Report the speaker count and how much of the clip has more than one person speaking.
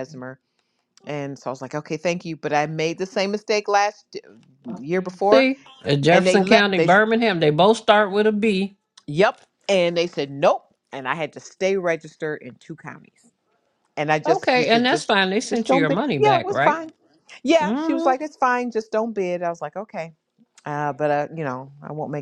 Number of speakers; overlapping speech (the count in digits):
2, about 16%